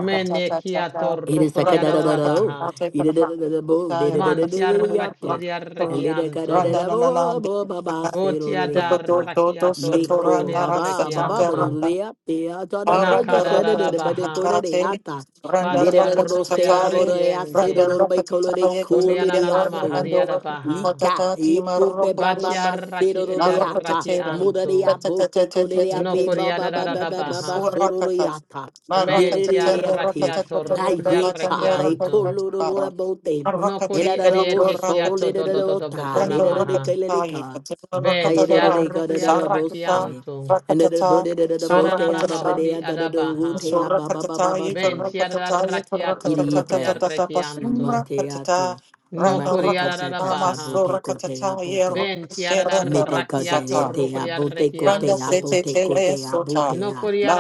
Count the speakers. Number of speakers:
3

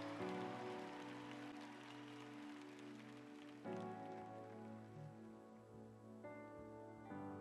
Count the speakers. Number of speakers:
0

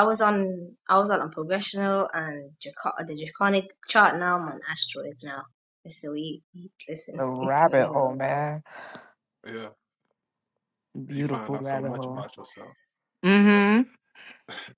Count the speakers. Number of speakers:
3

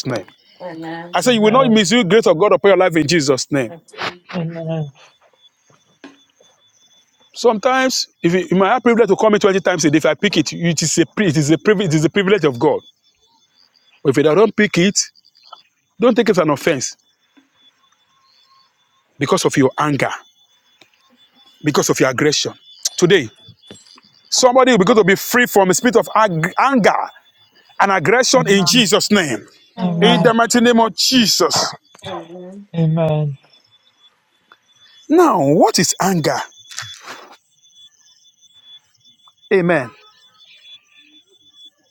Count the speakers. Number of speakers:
3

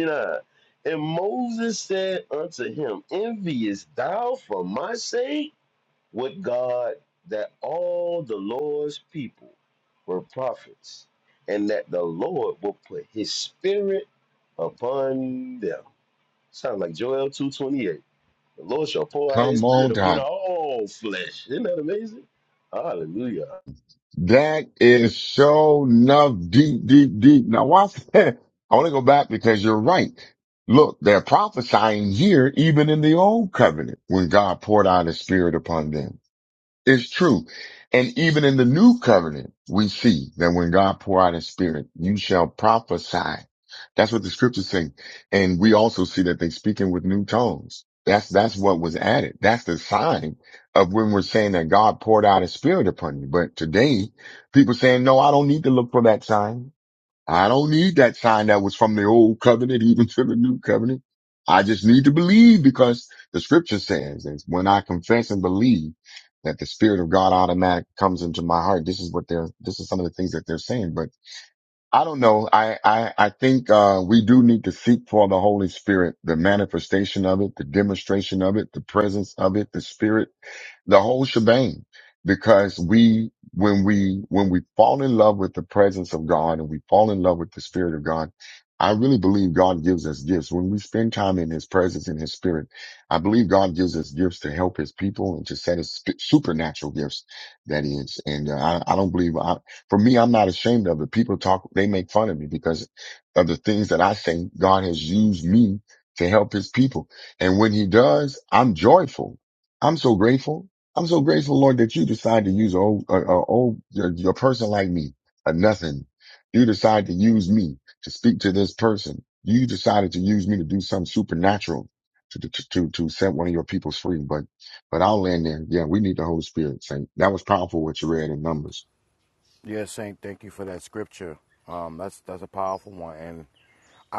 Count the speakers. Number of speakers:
3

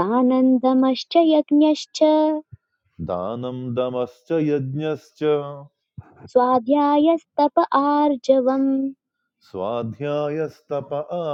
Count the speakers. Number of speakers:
2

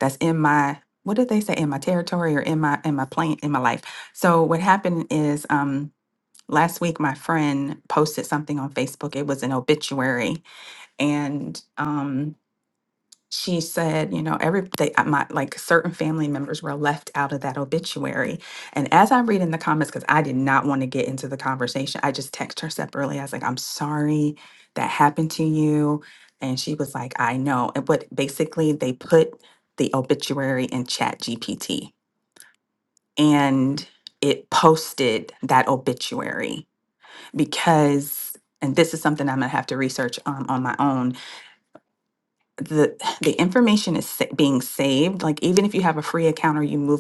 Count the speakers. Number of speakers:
1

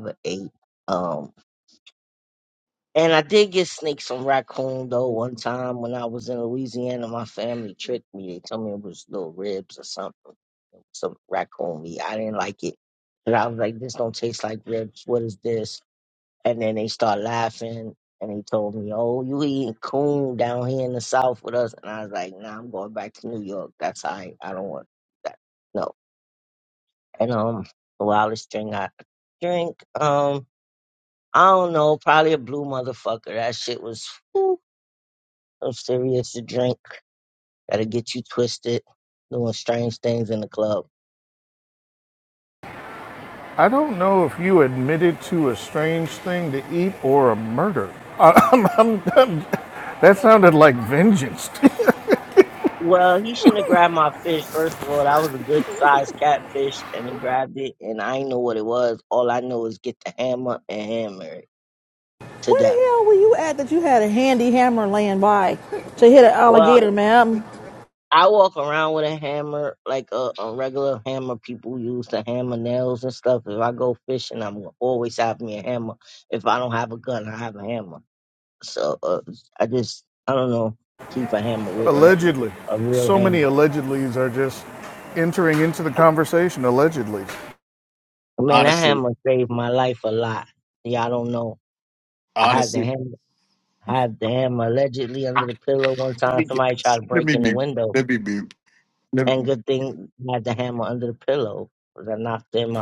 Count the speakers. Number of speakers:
4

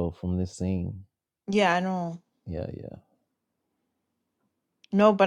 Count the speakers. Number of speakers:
2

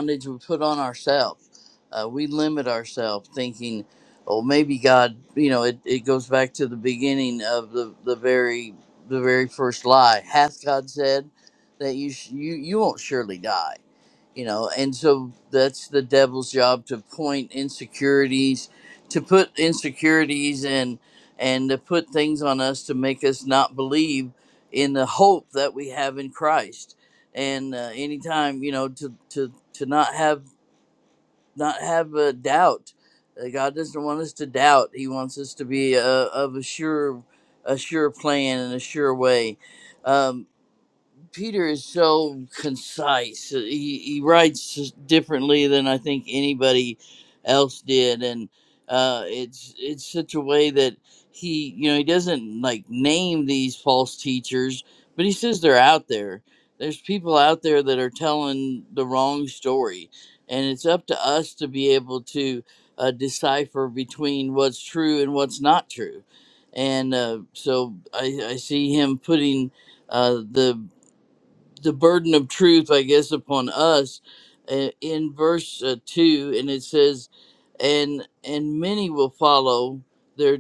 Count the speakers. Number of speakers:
1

